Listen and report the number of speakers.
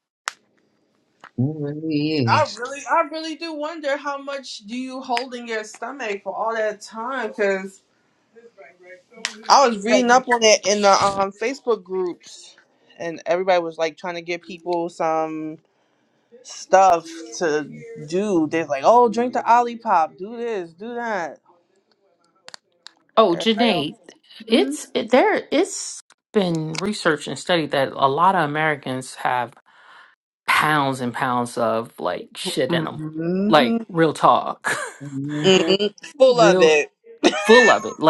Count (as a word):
three